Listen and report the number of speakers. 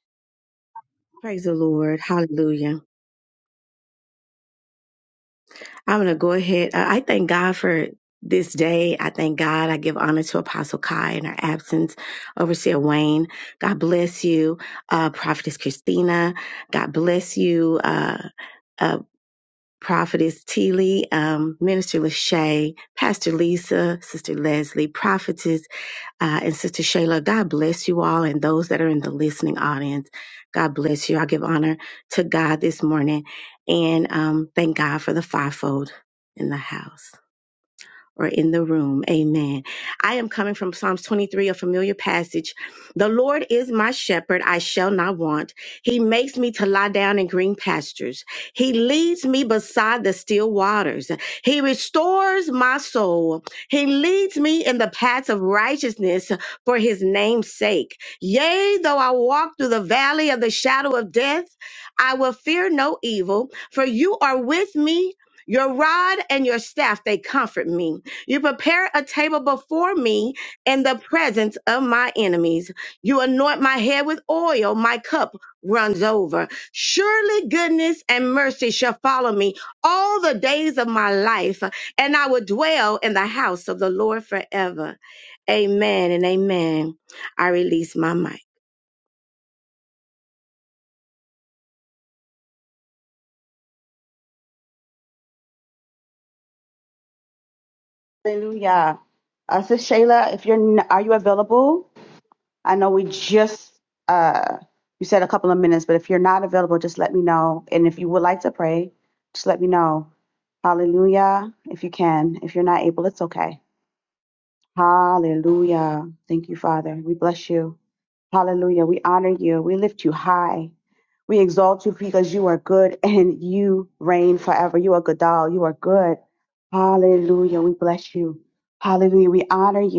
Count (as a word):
two